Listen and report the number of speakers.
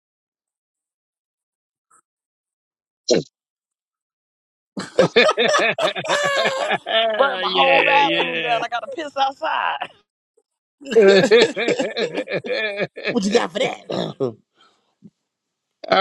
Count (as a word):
three